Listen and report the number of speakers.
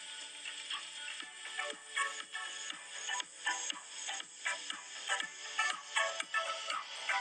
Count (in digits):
0